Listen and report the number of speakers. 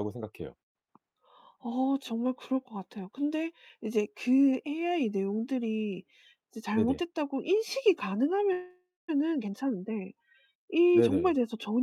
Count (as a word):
two